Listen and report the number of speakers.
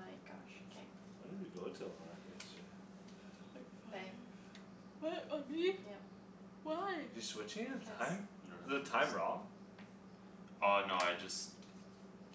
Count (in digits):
4